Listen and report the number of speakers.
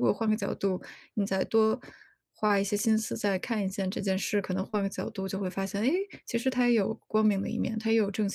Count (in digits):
1